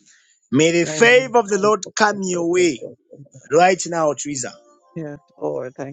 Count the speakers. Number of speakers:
two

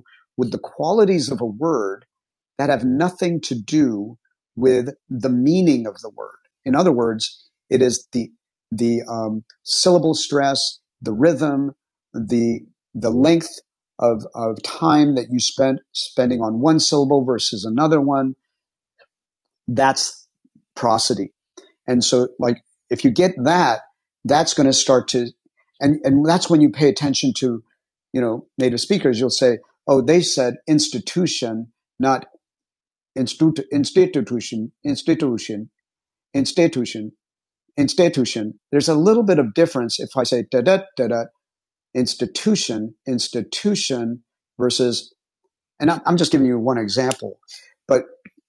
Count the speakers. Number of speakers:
one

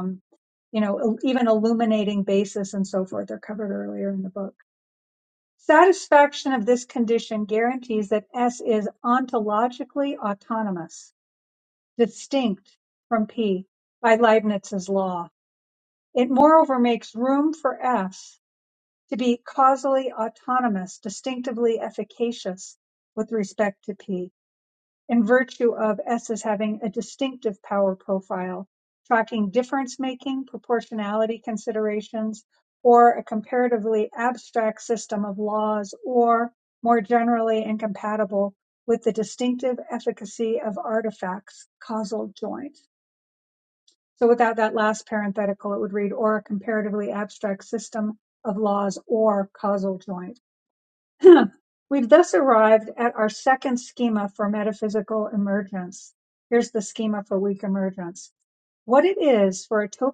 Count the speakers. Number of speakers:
one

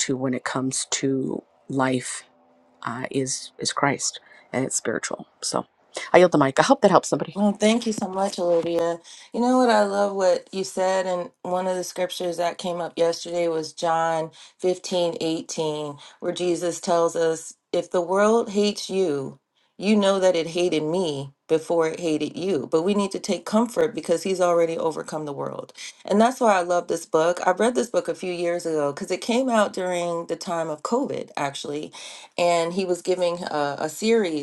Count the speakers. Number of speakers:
two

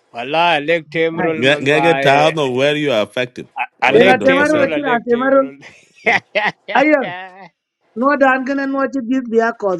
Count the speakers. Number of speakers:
three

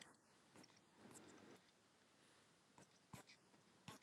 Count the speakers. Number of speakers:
zero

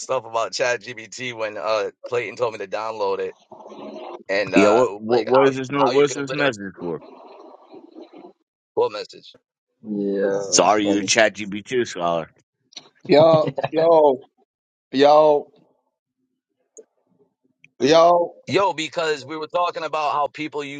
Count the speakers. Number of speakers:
four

